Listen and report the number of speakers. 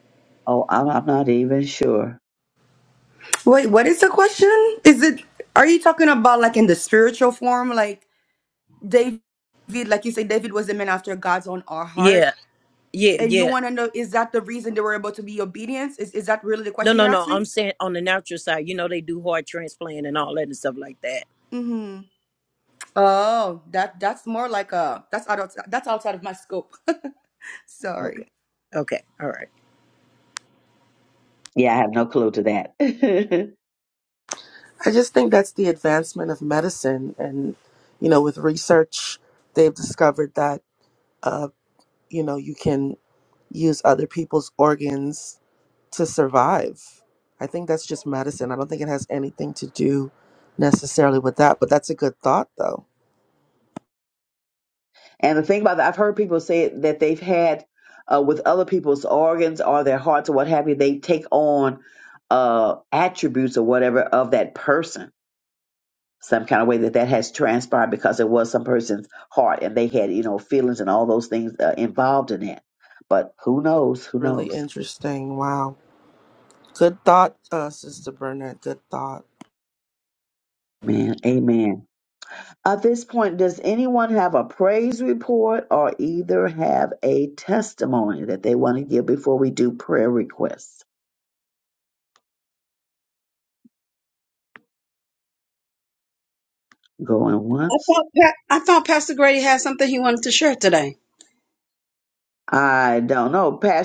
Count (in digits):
5